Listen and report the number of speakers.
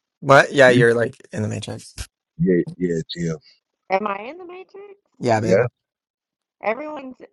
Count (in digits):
3